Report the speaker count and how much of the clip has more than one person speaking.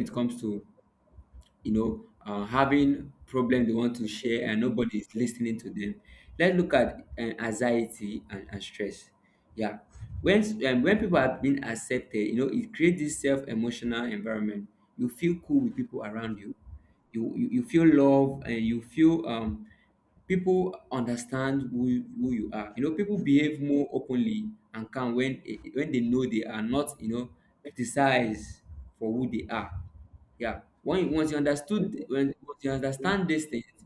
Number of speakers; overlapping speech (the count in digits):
1, no overlap